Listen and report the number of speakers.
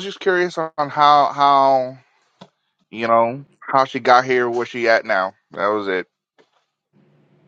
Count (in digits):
1